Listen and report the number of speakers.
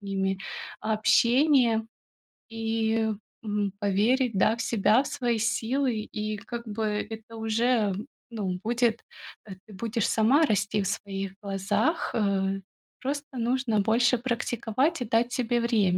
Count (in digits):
1